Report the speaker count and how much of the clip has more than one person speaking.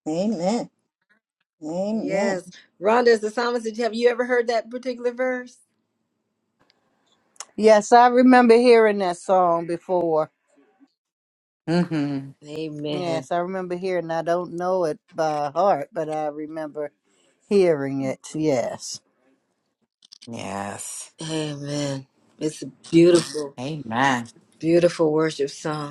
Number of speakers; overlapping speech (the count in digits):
4, about 3%